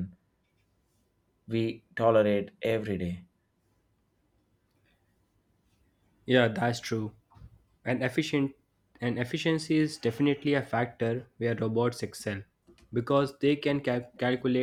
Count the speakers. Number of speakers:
2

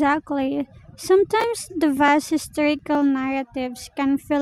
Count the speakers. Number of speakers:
1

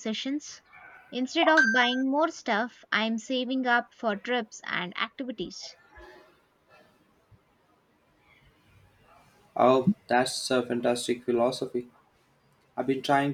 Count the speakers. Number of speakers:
2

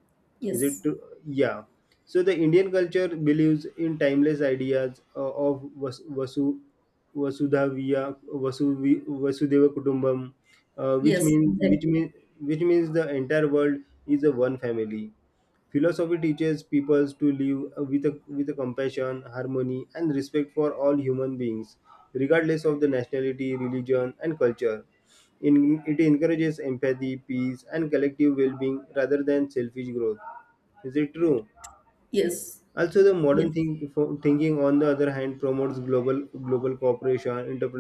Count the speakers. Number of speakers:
2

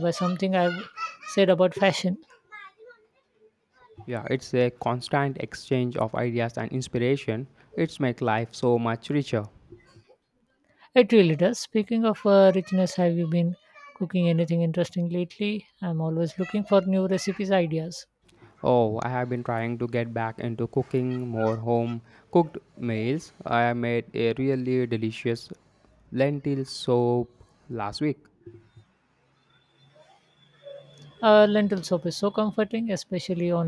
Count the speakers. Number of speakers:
2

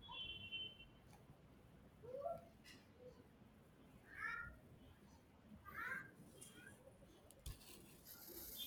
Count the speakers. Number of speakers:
0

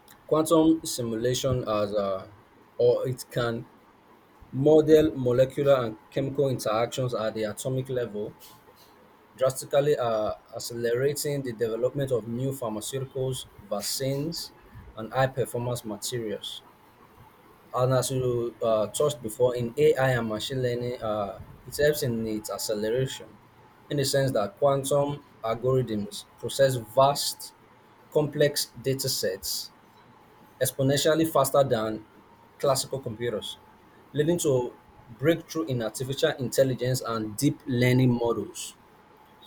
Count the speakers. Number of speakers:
1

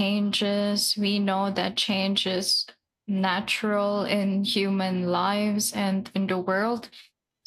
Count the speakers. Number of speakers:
1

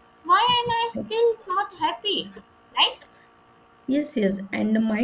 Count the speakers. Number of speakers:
2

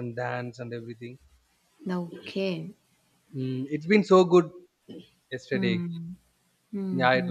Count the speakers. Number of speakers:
2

